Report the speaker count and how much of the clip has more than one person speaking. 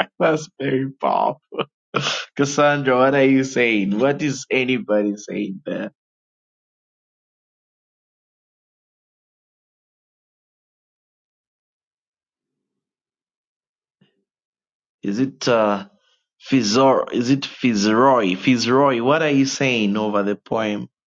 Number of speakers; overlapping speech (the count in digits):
1, no overlap